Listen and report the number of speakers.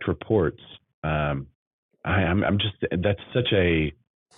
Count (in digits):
1